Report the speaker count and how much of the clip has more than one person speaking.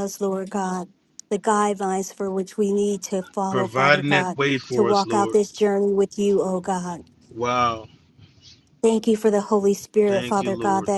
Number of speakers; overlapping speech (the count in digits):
2, about 22%